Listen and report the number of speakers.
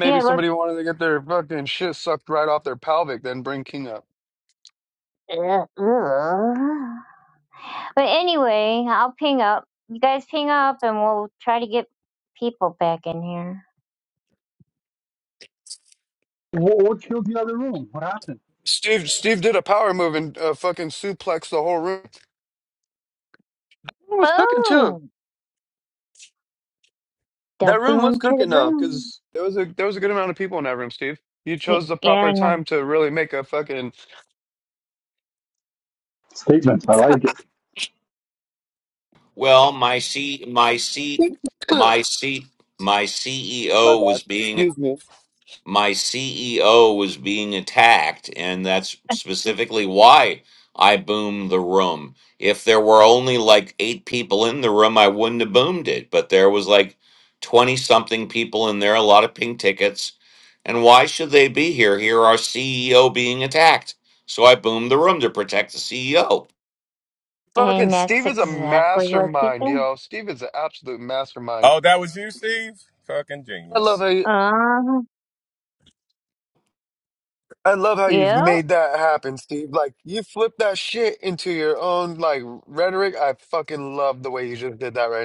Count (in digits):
5